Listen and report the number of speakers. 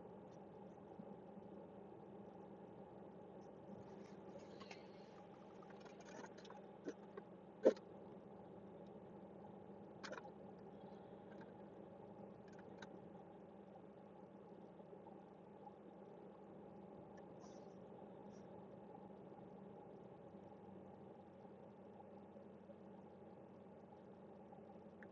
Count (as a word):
zero